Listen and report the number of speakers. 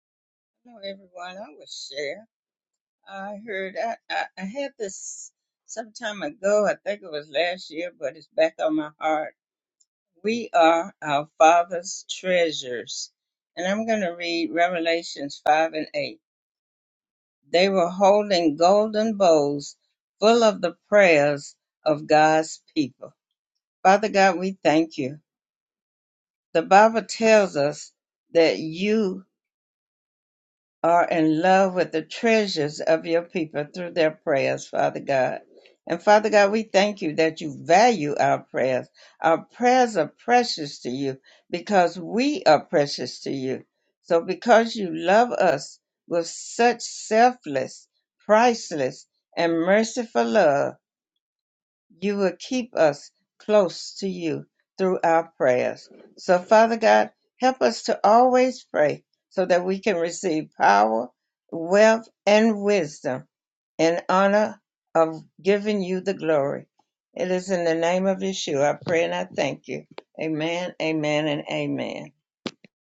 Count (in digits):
1